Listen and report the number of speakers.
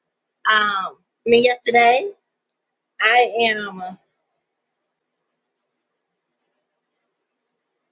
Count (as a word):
one